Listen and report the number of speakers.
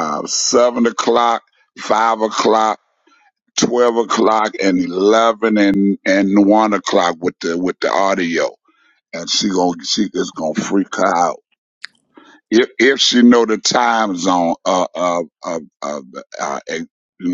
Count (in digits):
1